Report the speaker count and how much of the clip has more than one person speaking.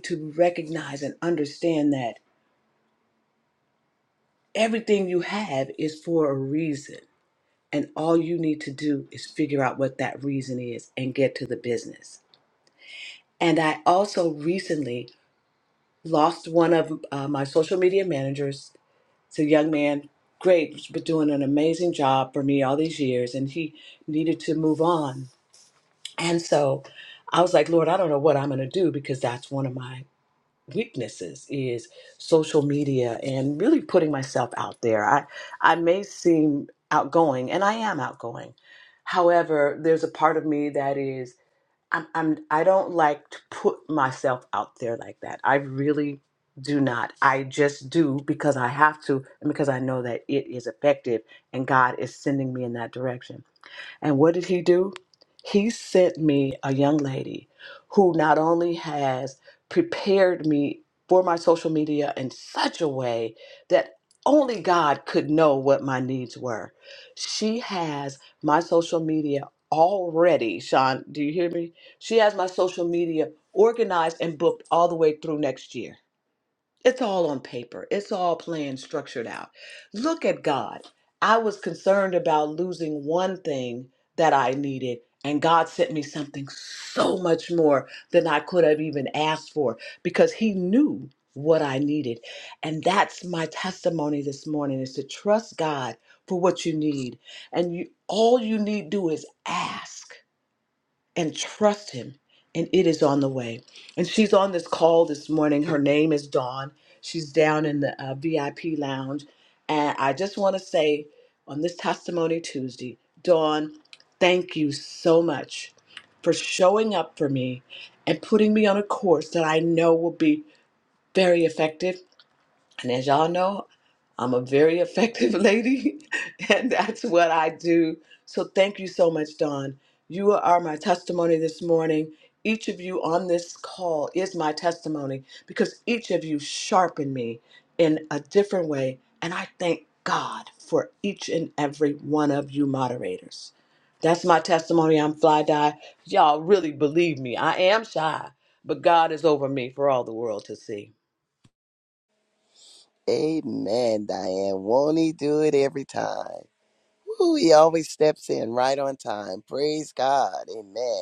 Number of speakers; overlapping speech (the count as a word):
two, no overlap